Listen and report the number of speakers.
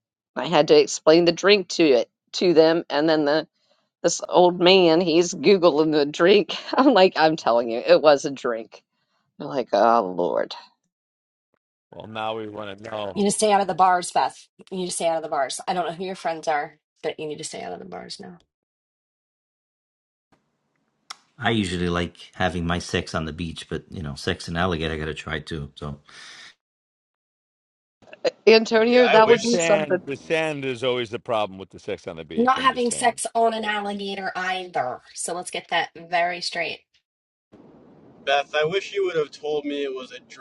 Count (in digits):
5